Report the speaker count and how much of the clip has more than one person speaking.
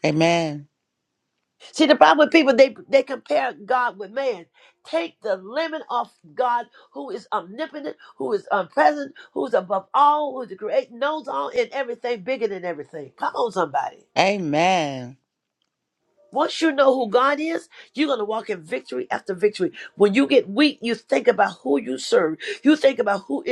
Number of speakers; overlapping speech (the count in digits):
2, no overlap